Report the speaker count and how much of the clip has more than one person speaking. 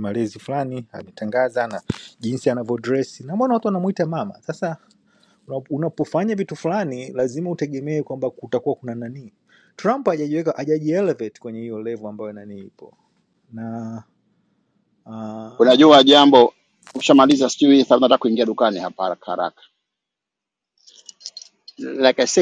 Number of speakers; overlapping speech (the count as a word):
two, about 2%